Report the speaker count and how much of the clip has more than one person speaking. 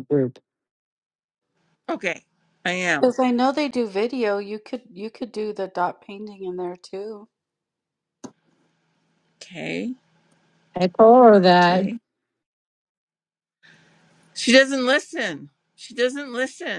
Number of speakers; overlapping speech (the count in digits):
3, about 2%